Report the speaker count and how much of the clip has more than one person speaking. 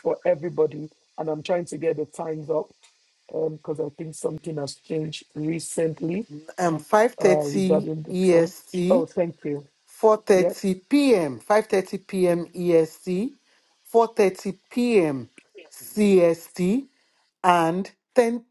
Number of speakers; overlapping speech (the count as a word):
two, about 9%